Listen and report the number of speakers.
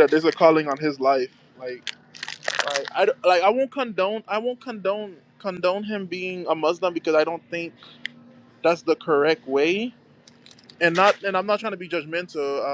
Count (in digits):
1